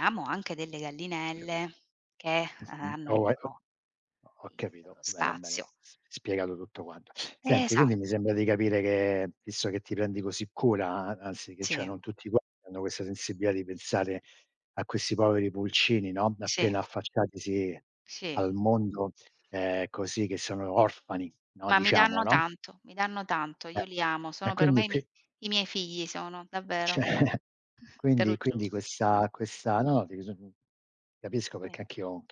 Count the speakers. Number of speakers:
two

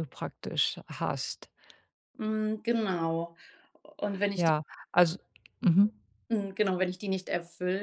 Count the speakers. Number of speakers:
two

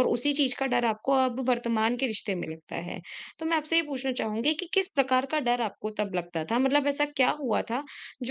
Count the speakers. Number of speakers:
one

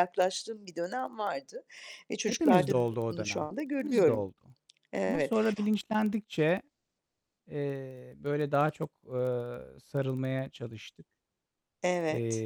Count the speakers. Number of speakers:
two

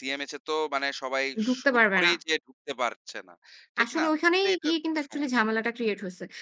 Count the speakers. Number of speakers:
two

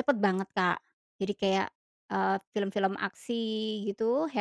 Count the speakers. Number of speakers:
one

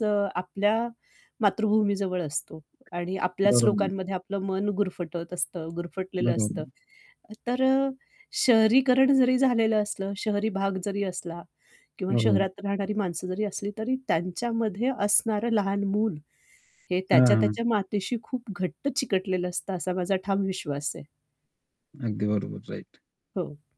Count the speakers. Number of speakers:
two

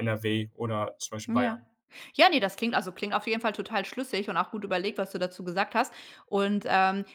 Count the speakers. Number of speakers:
two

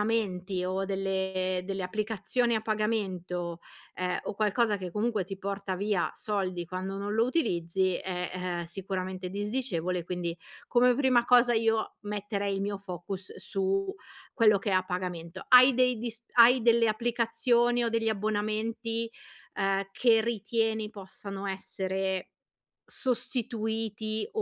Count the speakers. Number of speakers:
one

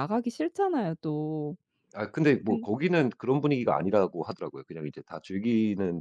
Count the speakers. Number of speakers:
two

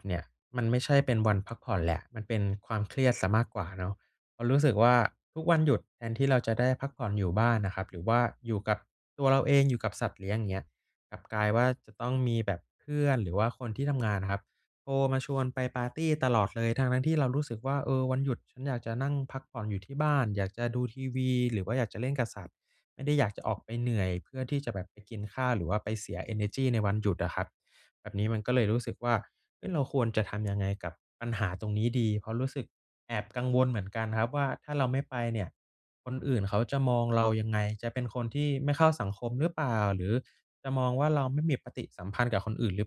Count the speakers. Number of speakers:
one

